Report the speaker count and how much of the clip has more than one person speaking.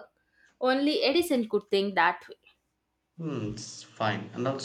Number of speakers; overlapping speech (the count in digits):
2, no overlap